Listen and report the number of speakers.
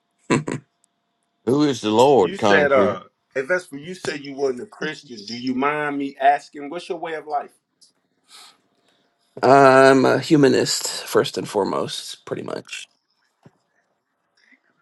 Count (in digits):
3